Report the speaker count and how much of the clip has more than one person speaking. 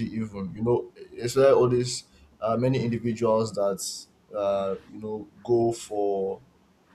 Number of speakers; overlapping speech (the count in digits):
1, no overlap